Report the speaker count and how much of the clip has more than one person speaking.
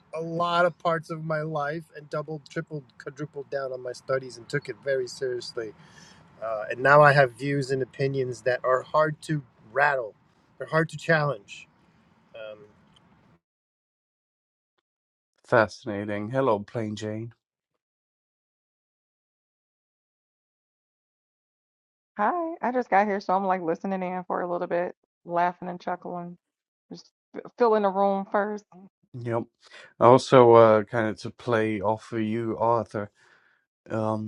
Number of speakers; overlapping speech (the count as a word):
three, no overlap